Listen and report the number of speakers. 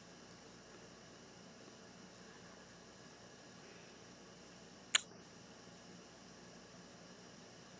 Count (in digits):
0